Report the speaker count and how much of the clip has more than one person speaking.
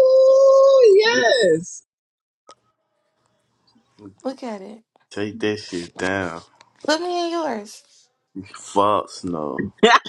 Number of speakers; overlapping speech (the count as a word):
three, no overlap